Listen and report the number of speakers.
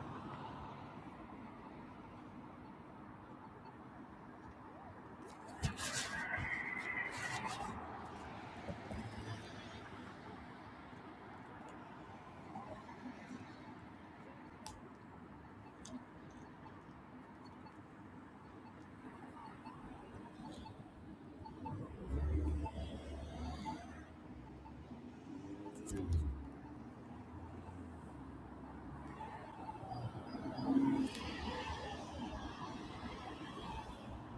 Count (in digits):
0